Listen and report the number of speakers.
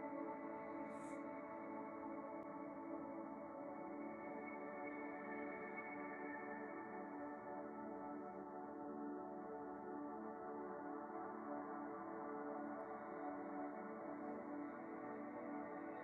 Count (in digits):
0